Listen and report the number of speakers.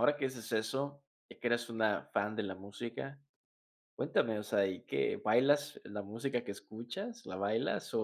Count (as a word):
one